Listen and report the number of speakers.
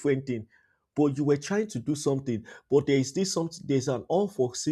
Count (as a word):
one